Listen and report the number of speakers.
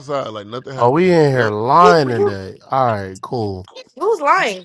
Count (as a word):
three